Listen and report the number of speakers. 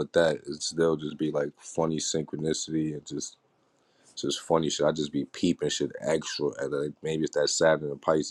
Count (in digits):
1